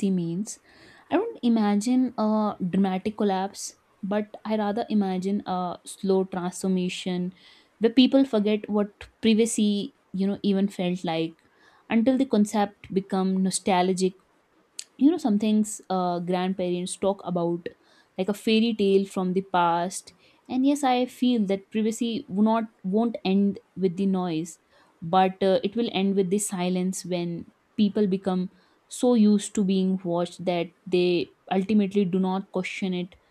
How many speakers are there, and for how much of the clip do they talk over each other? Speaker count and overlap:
one, no overlap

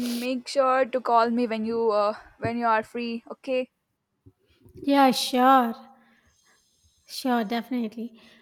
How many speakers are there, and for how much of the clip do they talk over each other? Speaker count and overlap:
two, no overlap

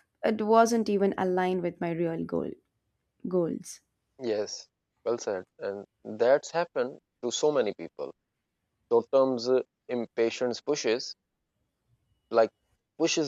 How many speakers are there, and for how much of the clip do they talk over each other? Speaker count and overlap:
two, no overlap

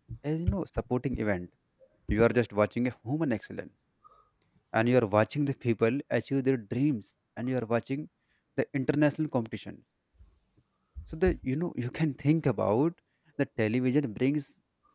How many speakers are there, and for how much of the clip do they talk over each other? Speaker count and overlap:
one, no overlap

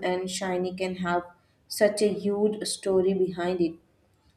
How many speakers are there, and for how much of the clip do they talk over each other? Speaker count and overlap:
one, no overlap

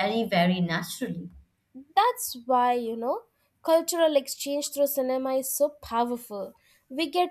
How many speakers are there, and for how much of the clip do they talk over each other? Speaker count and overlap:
two, no overlap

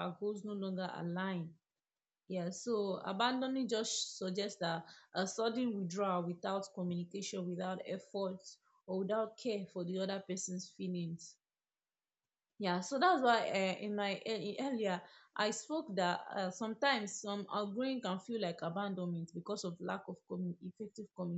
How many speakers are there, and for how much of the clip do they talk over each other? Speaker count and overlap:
one, no overlap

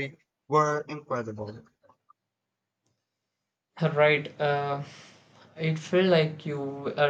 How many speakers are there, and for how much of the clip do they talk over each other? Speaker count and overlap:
two, no overlap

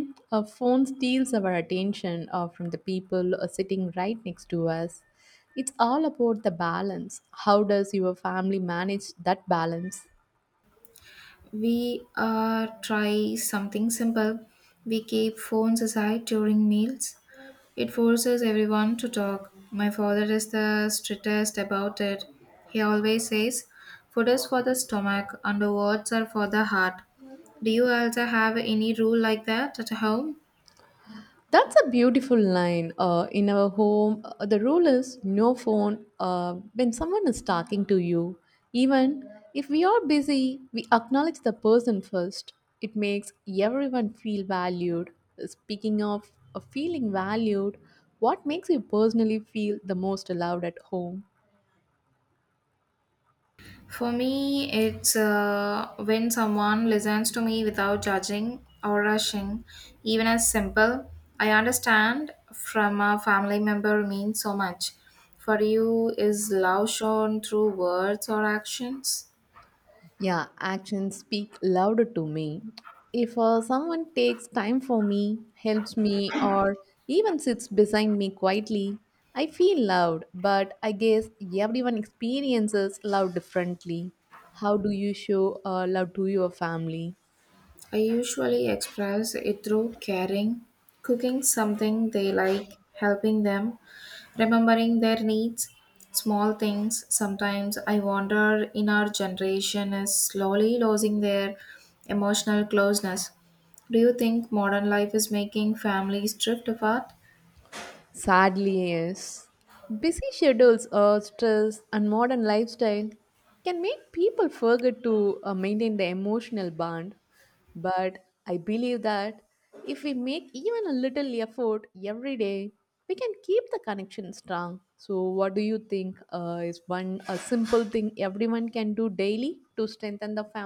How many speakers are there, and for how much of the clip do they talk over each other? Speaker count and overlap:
two, no overlap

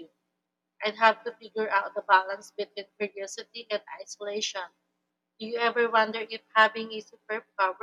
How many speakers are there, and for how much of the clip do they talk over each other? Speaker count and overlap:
one, no overlap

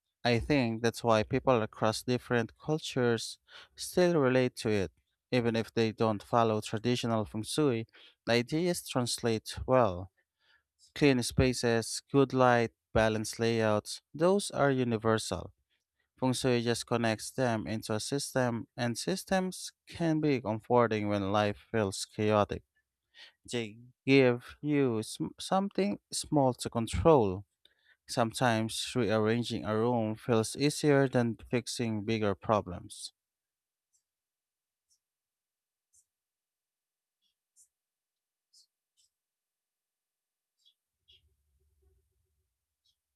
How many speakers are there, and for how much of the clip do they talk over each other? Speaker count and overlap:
one, no overlap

